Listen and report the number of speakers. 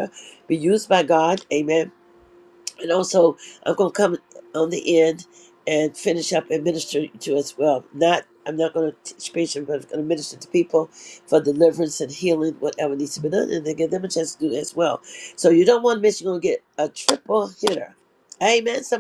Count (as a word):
one